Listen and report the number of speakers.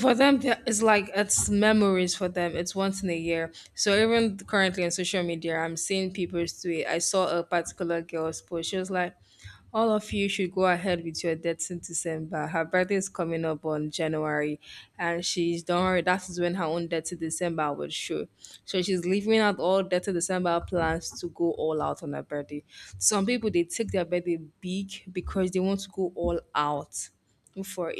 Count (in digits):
1